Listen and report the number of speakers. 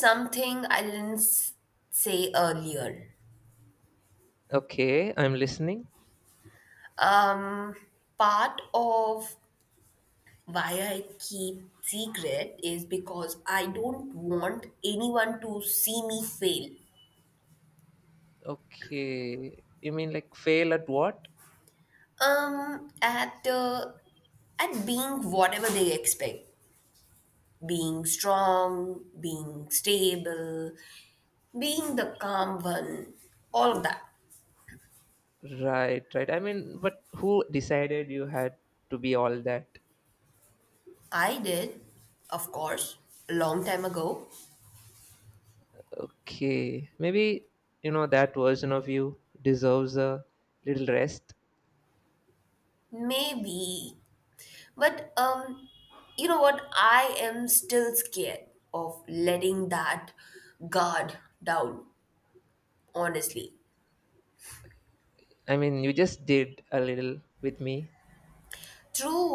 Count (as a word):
two